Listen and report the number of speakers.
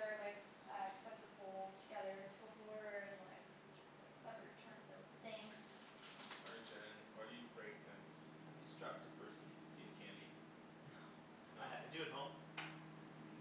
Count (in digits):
3